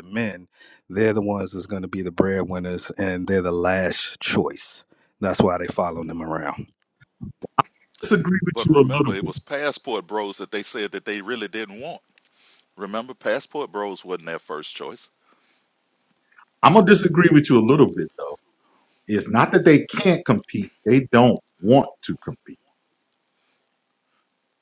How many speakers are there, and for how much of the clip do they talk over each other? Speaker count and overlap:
3, about 3%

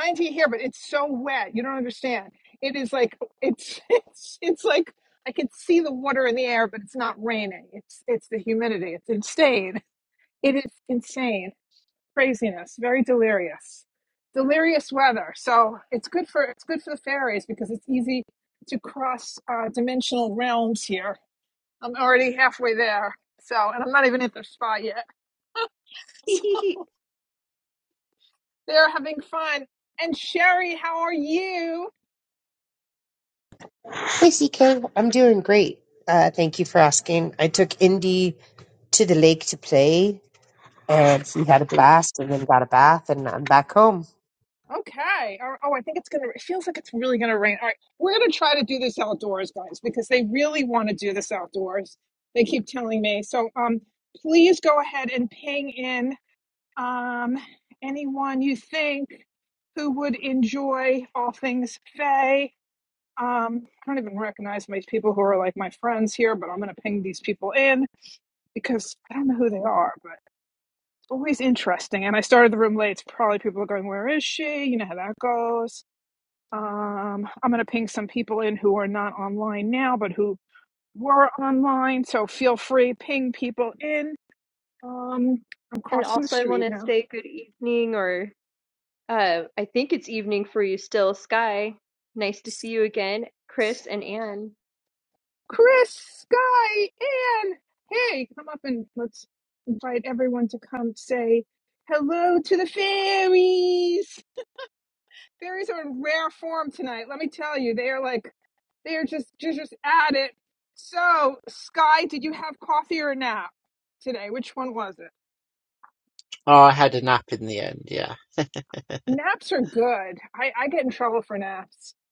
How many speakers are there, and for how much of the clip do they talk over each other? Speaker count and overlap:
4, about 1%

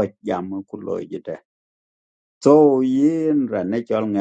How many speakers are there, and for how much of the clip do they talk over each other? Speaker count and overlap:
1, no overlap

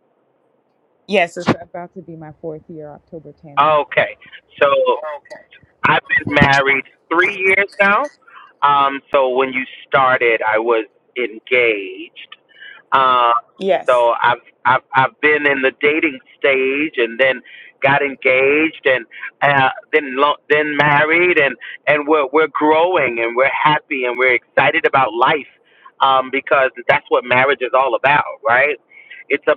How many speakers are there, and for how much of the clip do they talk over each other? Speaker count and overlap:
2, under 1%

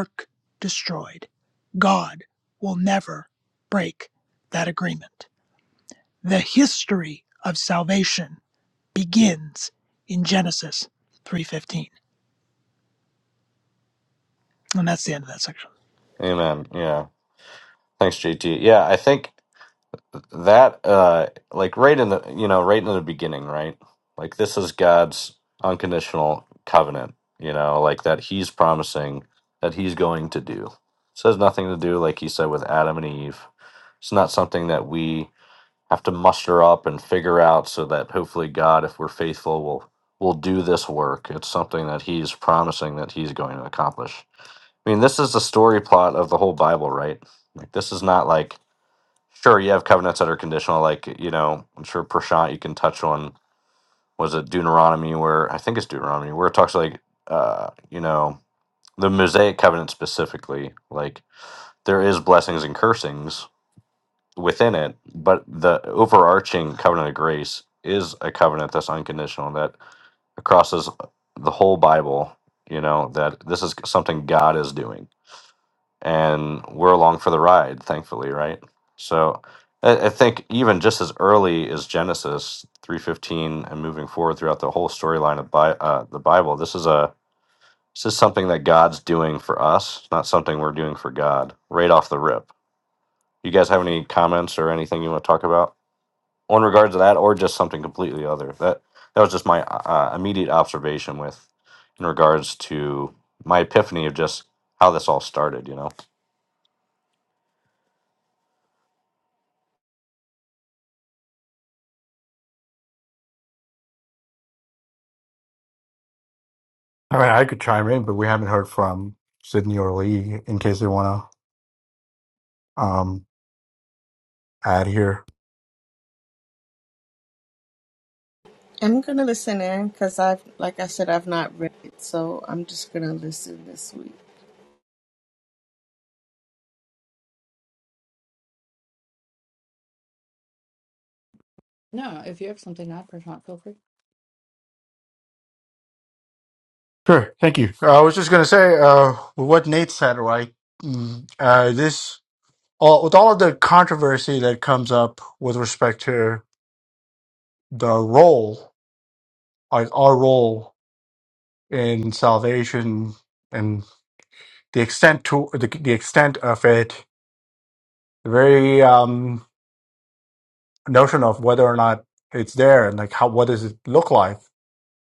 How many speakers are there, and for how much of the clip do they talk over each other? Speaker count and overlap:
5, no overlap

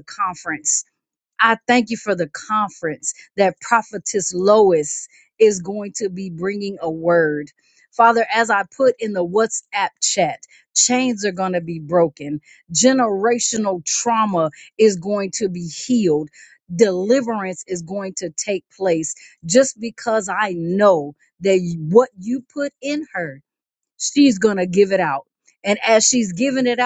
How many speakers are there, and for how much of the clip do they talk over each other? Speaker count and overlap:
1, no overlap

